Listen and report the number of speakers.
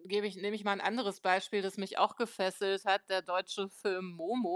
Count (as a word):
one